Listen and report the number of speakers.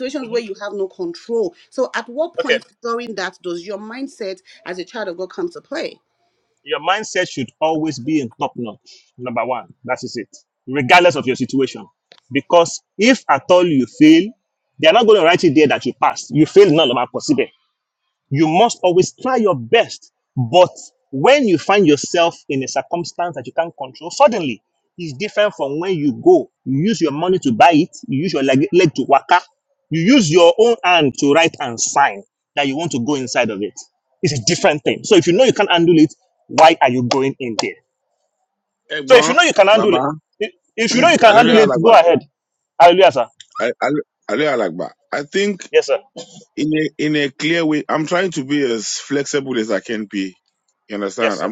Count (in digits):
3